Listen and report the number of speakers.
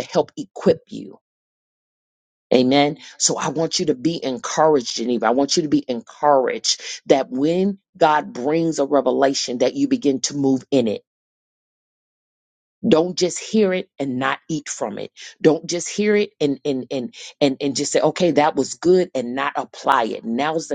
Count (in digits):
1